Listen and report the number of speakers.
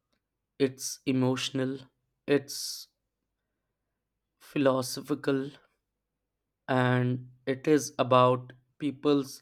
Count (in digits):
1